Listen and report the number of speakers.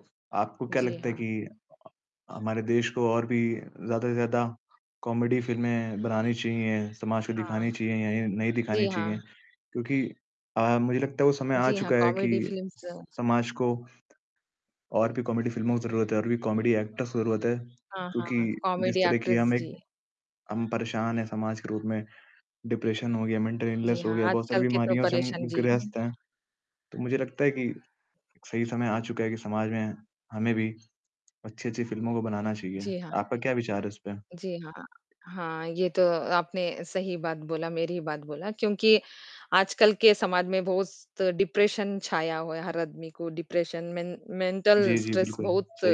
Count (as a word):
two